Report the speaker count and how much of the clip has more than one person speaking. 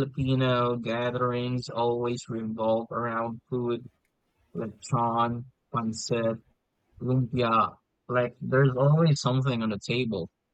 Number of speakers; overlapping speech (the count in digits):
1, no overlap